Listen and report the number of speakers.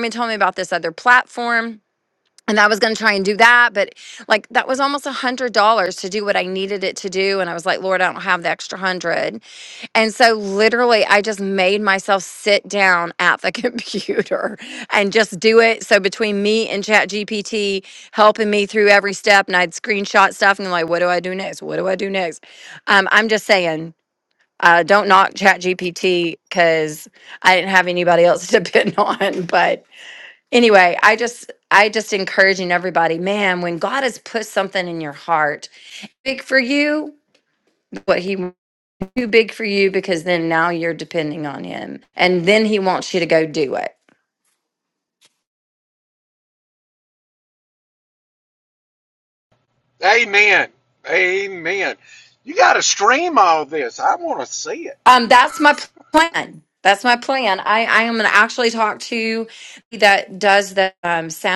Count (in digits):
2